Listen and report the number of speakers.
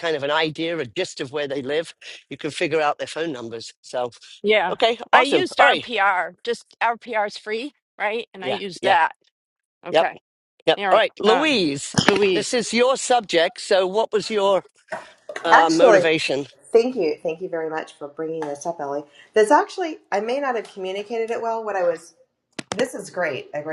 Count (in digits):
3